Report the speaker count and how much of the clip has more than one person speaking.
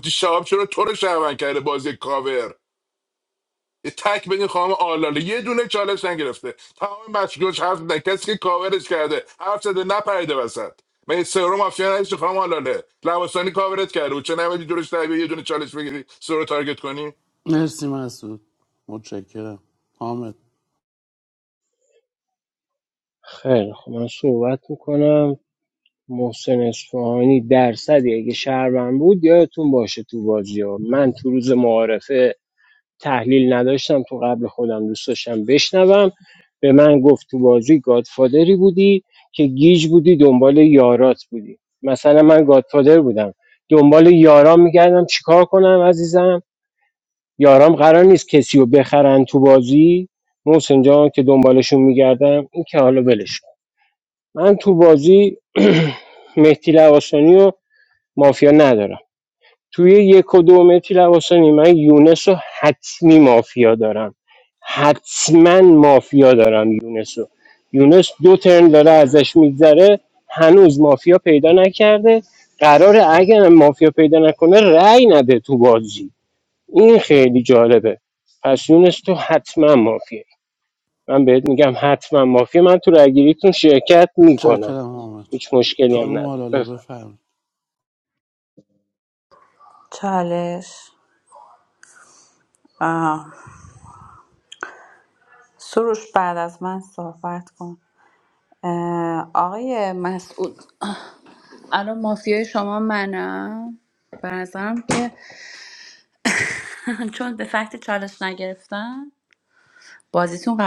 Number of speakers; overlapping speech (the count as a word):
four, about 1%